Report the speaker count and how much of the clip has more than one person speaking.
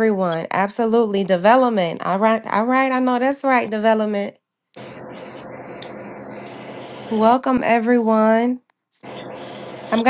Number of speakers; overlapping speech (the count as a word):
one, no overlap